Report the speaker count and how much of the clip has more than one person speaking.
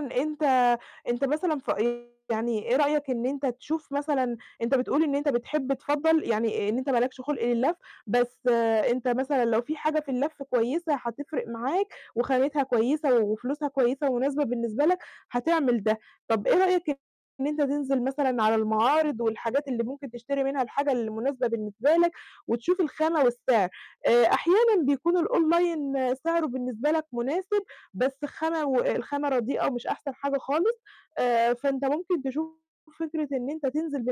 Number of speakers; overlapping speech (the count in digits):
1, no overlap